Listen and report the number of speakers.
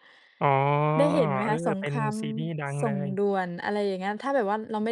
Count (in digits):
2